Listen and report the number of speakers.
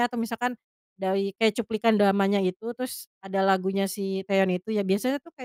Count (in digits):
1